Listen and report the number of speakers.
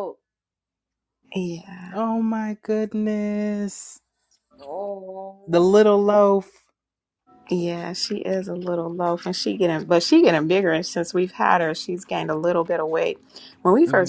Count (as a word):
three